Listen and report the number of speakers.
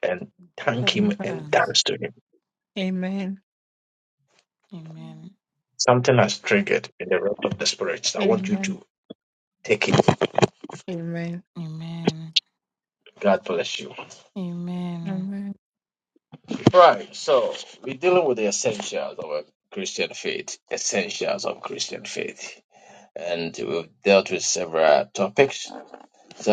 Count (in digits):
3